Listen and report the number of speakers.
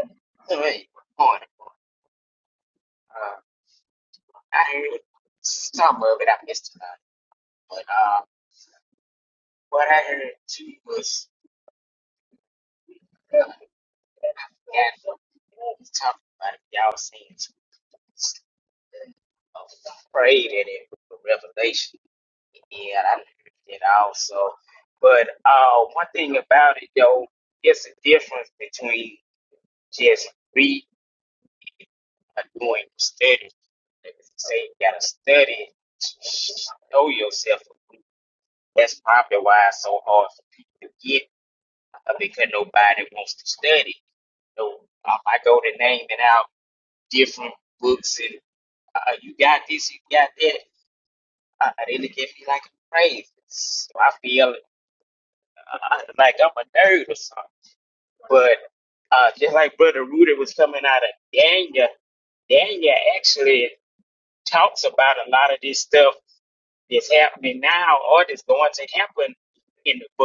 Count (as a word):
one